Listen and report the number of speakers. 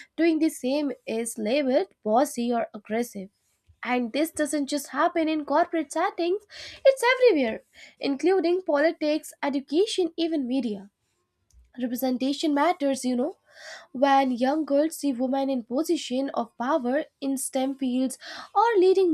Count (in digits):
1